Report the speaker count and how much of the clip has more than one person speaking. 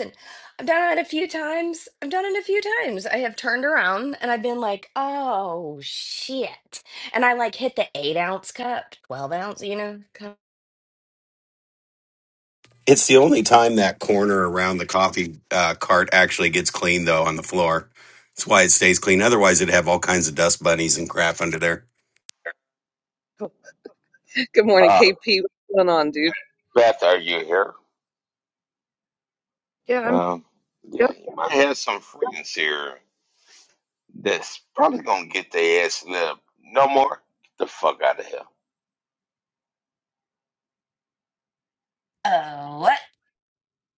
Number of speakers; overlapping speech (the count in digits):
4, about 1%